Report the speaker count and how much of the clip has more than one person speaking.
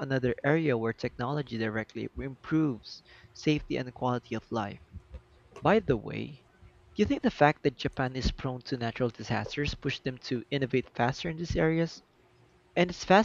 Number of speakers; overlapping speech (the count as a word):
one, no overlap